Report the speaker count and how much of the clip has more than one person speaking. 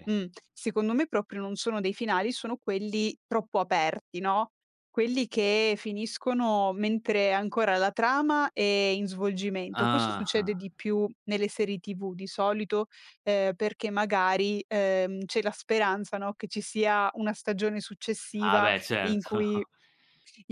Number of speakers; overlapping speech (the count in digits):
2, about 9%